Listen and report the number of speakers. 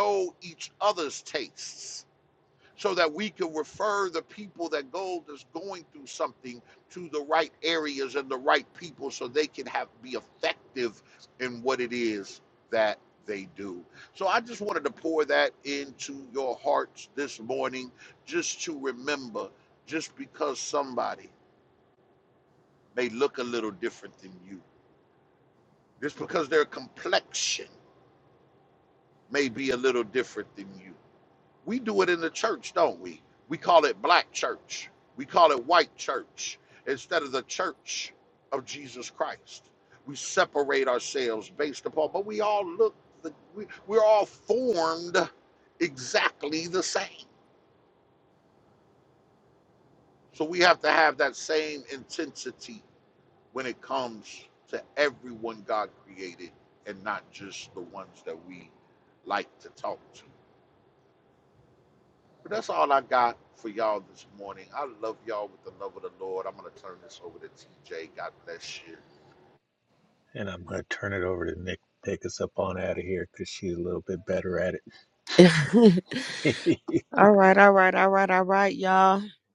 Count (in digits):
3